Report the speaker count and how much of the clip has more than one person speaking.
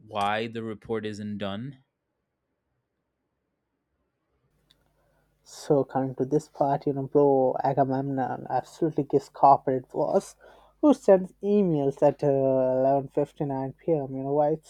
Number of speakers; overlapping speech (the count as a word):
two, no overlap